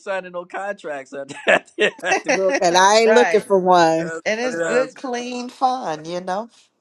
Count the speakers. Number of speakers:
3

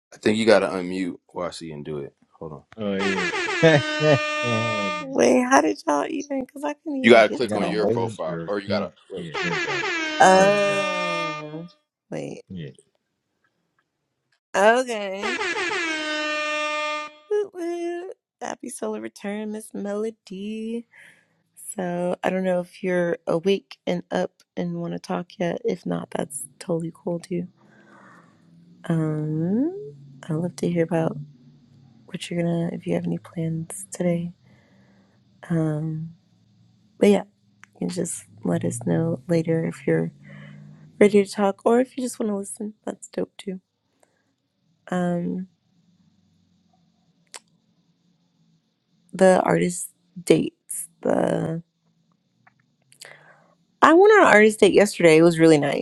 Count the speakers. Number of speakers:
3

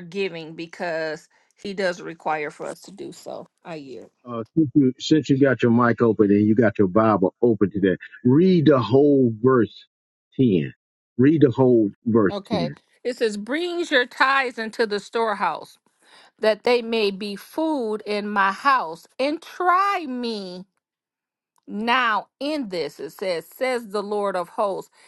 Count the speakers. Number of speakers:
2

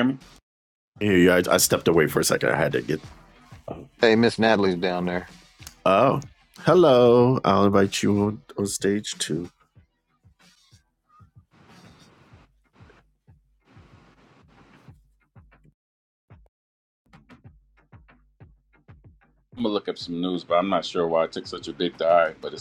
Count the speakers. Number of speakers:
3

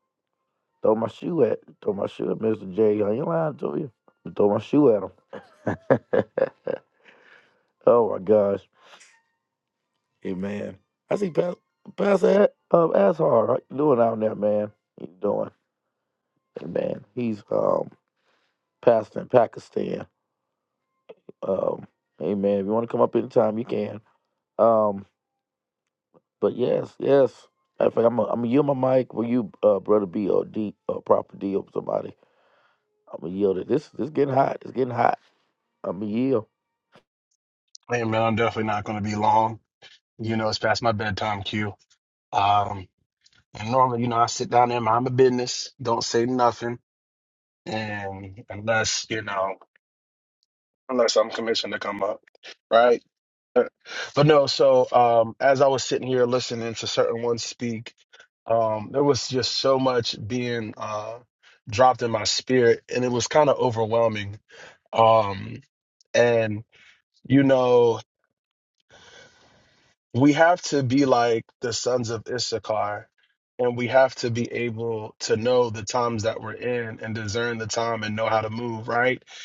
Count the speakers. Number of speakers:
2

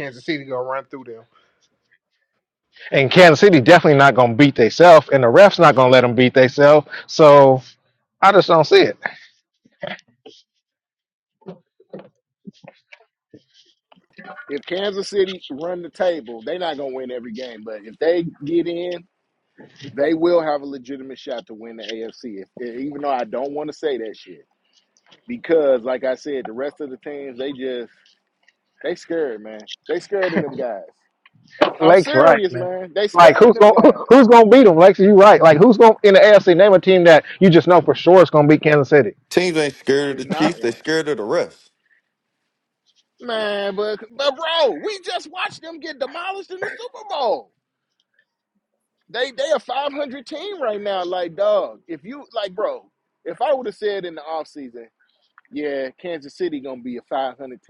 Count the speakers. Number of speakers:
4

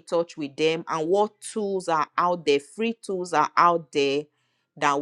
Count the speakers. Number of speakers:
1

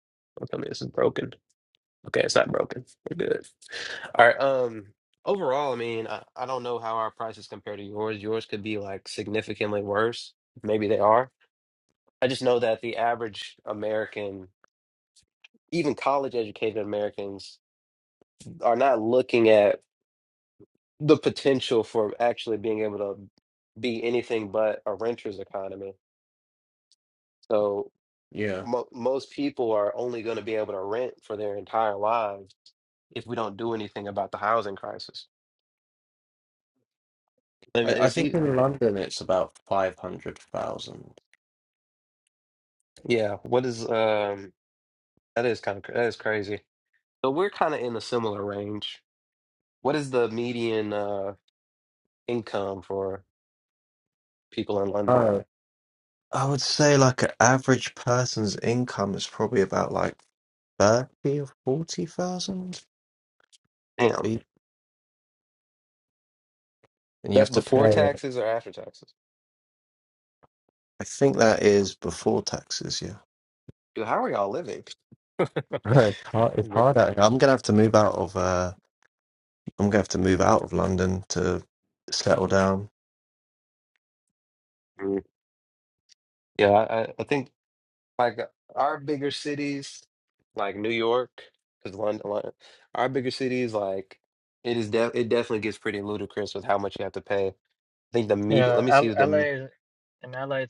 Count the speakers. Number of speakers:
3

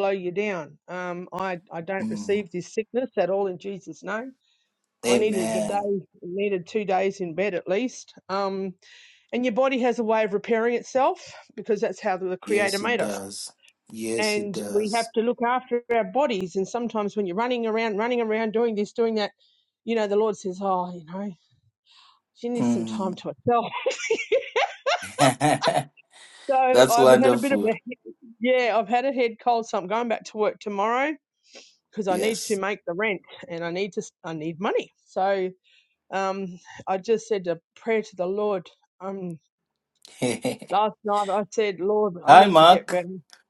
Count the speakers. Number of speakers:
2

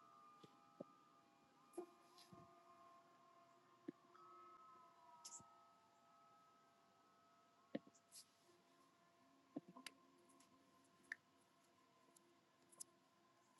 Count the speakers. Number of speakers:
0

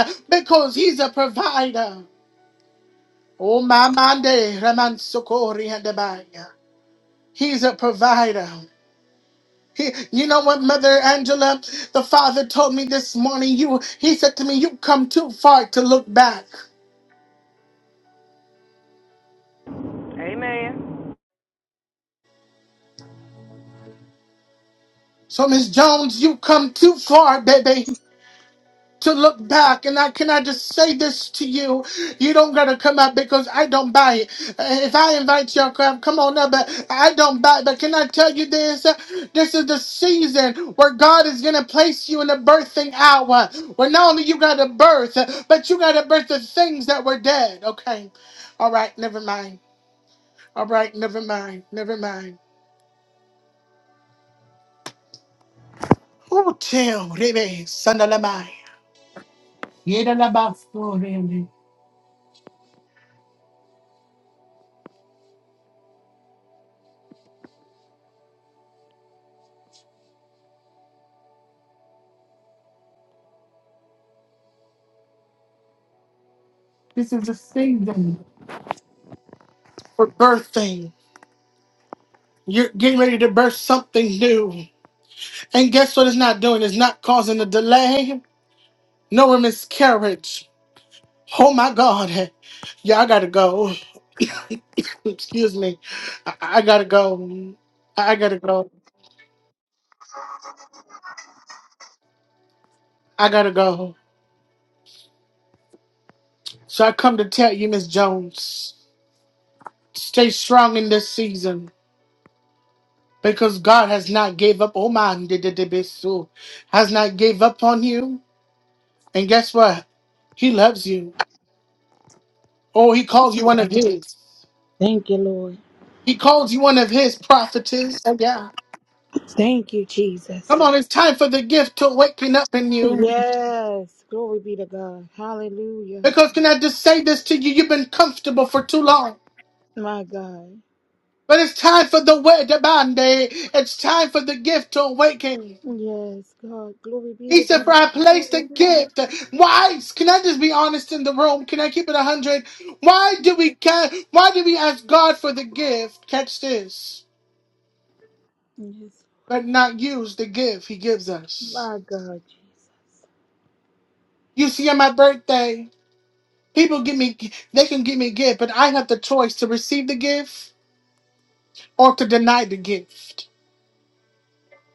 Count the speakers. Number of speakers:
3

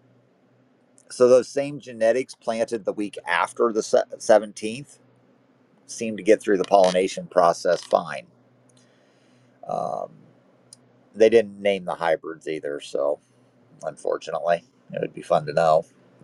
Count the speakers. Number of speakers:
1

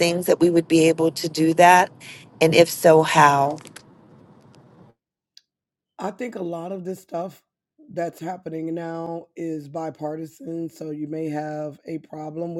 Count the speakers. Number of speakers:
2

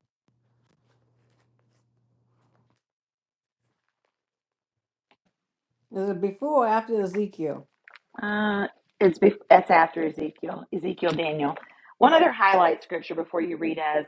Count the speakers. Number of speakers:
2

